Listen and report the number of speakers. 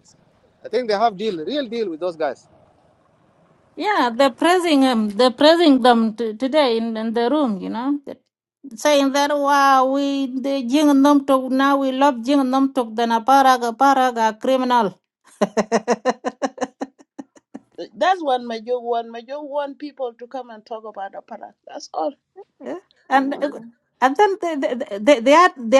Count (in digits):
3